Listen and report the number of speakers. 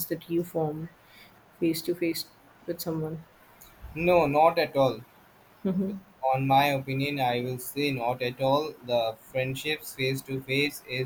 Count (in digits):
2